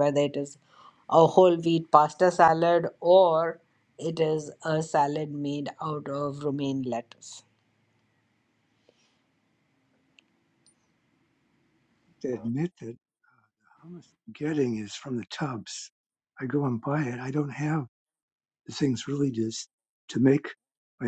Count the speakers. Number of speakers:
two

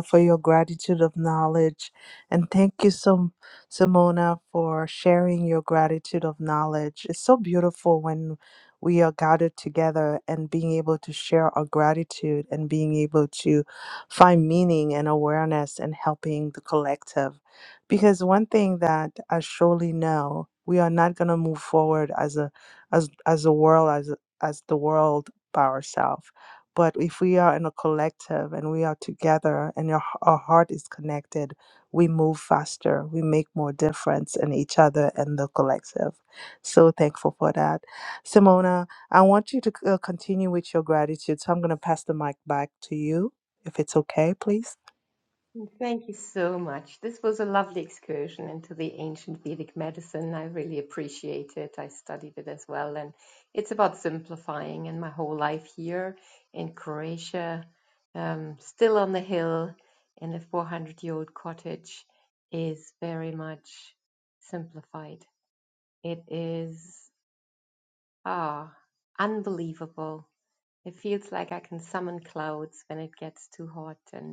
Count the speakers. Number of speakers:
two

